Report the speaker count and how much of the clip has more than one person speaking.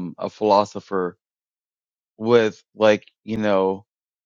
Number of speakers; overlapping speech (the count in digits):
1, no overlap